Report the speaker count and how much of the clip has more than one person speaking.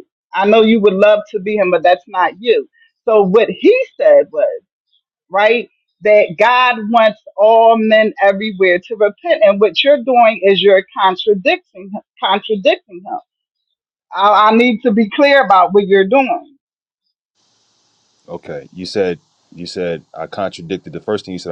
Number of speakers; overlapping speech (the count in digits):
2, no overlap